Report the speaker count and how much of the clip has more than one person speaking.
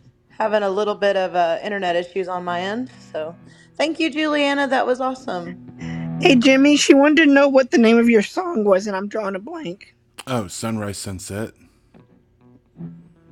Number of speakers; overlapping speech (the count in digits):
3, no overlap